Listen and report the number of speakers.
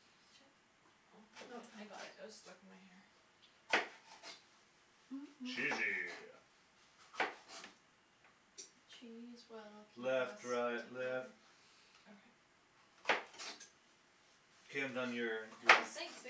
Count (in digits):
3